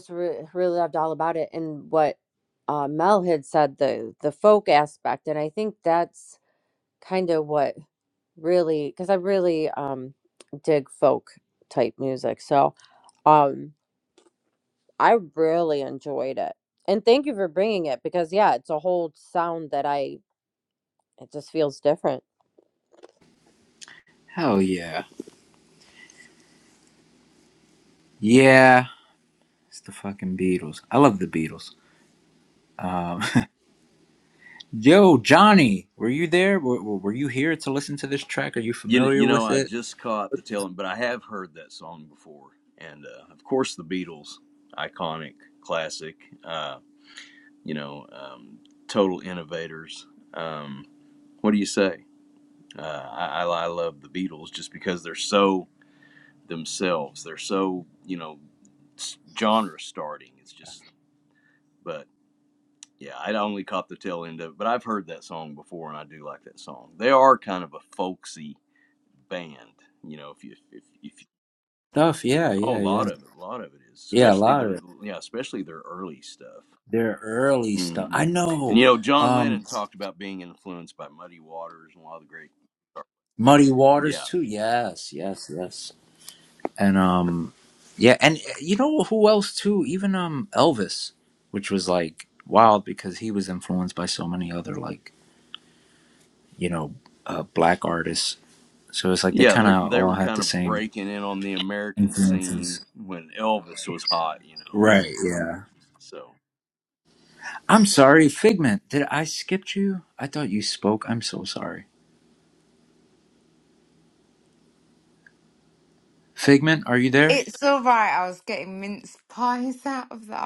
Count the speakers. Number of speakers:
4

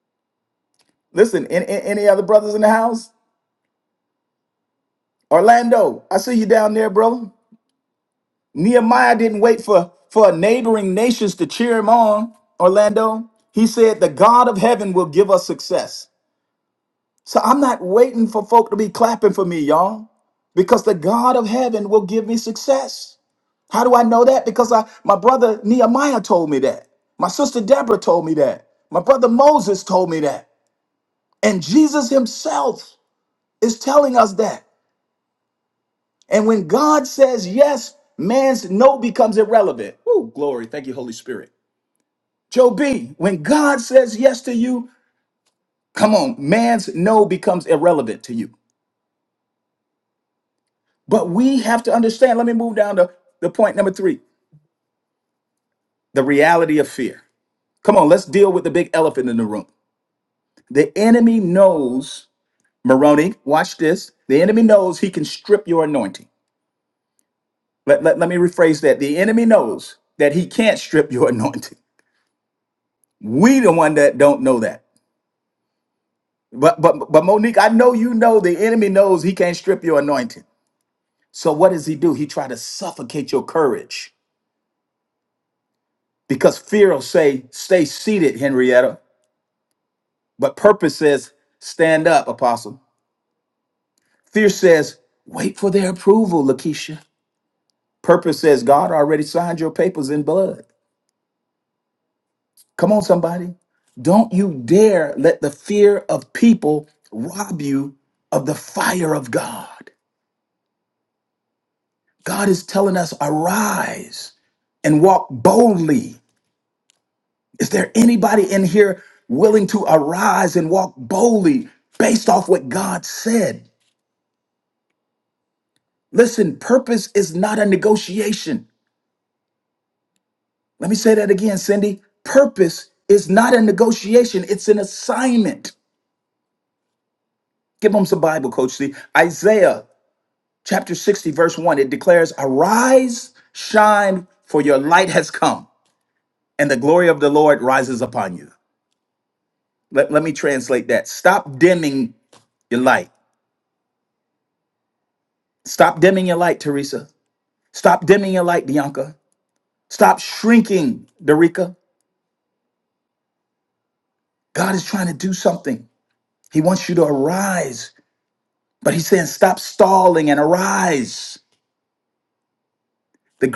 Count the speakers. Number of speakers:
1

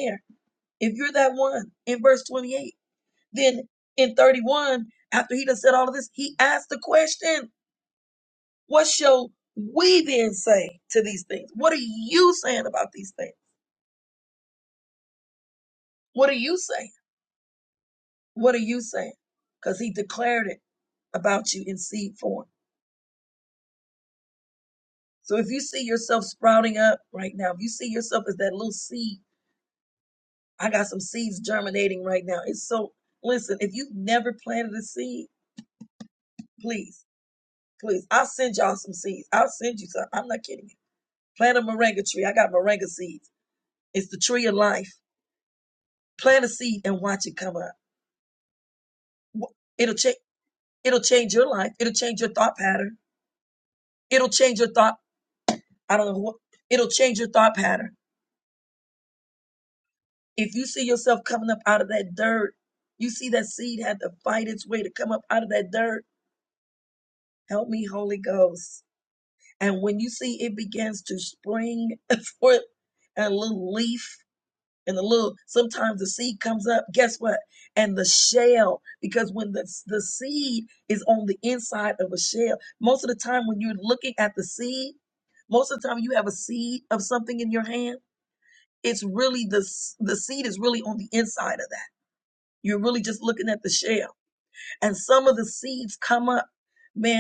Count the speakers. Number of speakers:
1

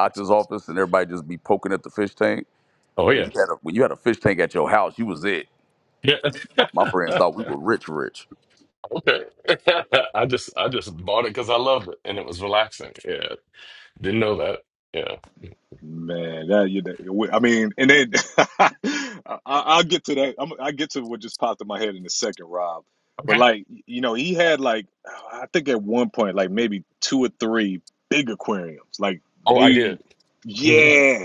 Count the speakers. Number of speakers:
3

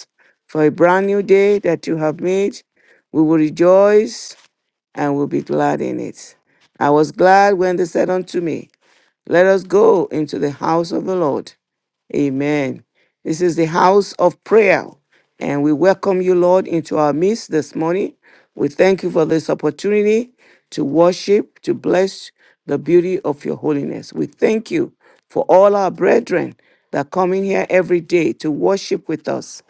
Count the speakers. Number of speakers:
1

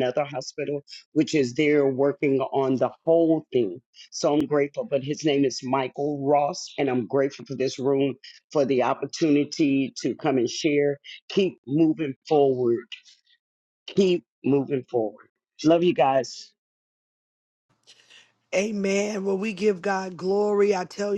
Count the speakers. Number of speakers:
2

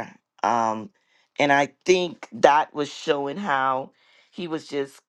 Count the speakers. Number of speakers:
1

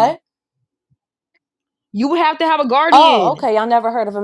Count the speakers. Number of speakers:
2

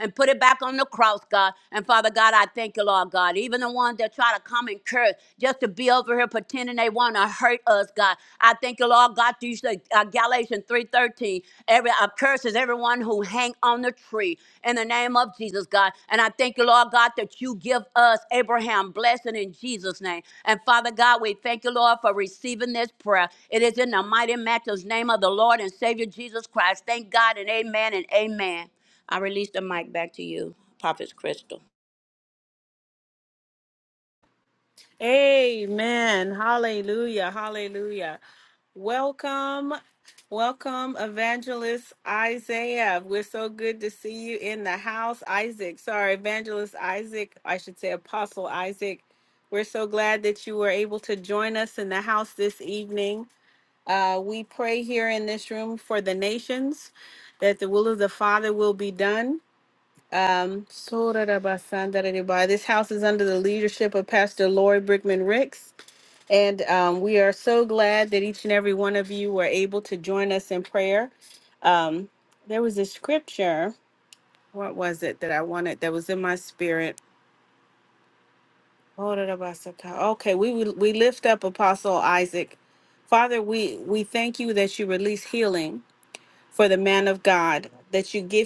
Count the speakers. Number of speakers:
2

